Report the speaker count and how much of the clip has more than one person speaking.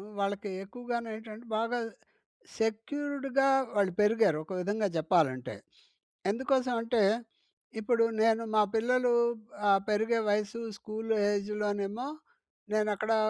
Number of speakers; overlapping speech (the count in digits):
1, no overlap